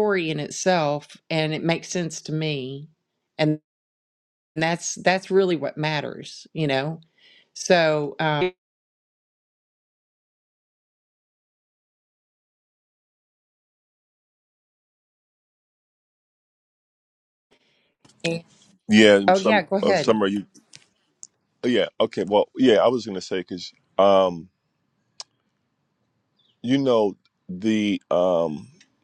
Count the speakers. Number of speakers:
2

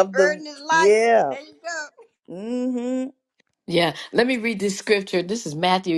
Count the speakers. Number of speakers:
3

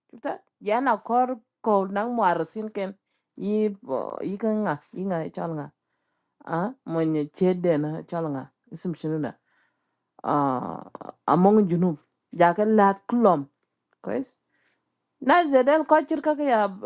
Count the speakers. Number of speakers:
1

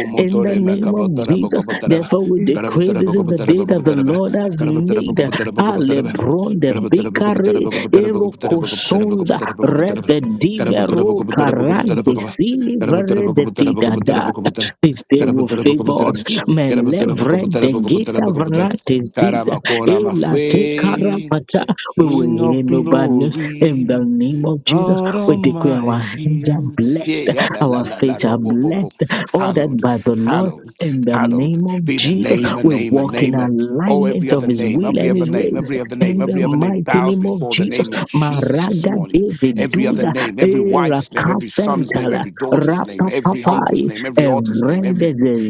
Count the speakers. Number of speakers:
2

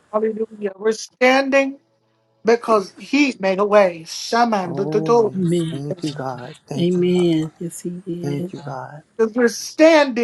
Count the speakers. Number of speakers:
3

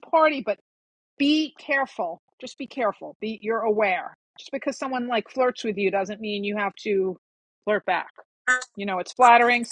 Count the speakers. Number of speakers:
1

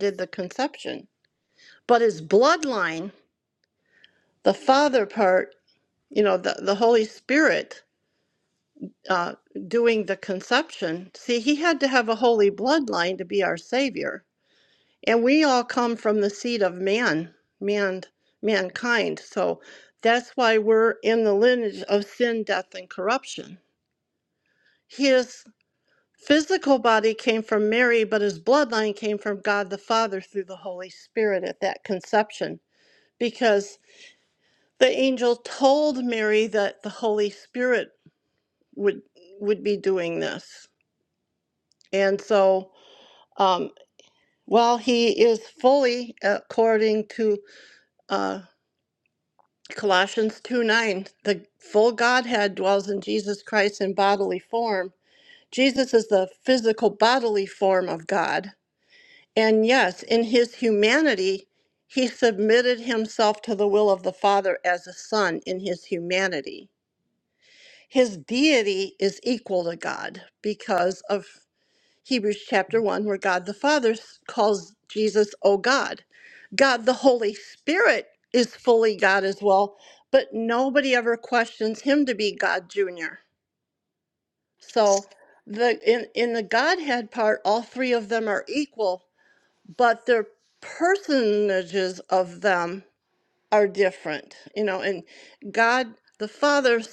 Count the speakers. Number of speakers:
1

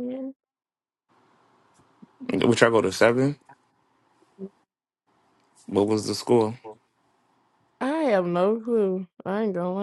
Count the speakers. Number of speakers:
2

